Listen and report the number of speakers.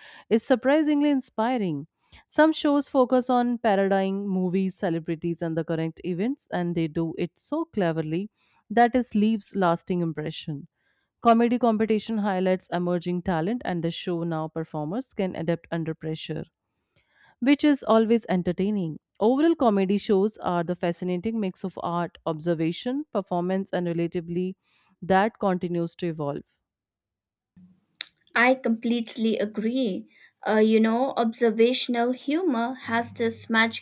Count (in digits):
2